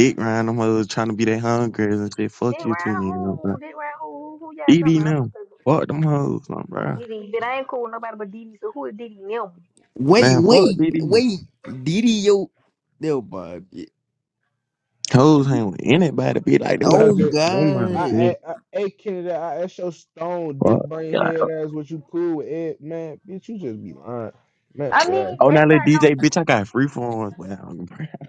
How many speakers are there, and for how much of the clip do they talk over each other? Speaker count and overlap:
four, about 21%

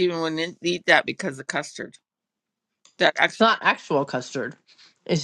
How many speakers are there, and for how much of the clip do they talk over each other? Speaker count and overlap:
two, about 1%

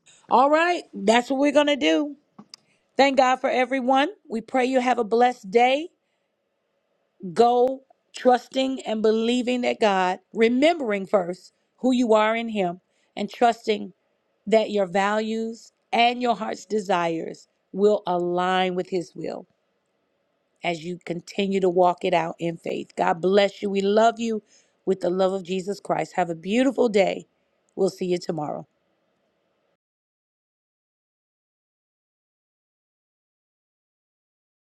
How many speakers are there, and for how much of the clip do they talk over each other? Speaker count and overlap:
one, no overlap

